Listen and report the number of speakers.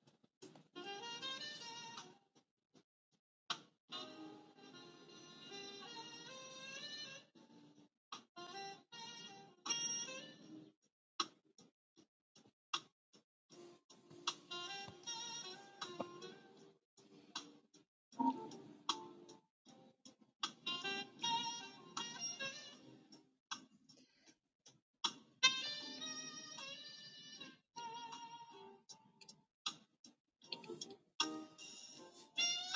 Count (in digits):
0